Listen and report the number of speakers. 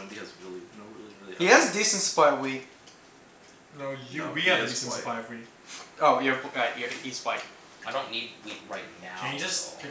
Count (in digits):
4